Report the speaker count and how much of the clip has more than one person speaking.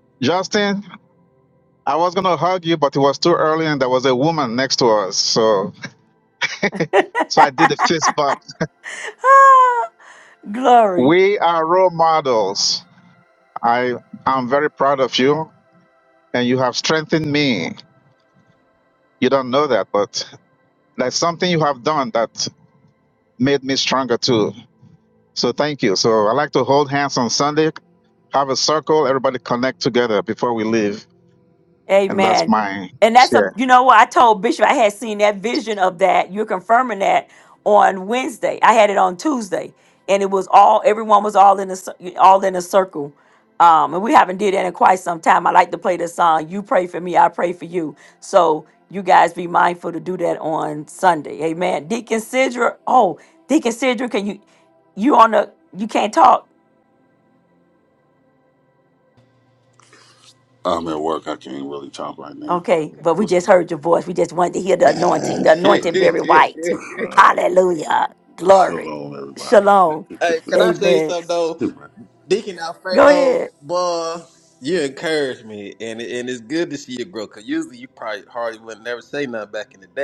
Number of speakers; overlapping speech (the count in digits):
4, about 5%